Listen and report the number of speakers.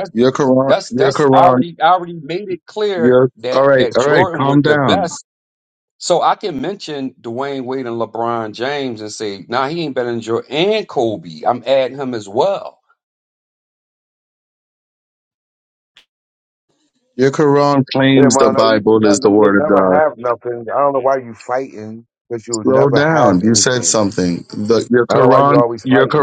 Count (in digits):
3